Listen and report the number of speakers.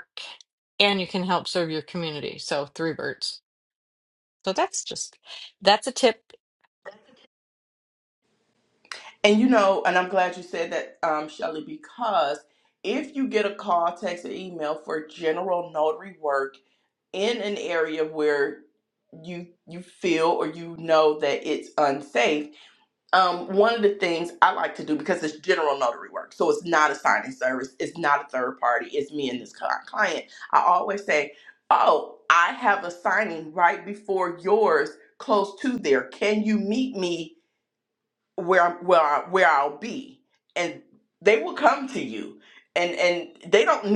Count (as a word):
two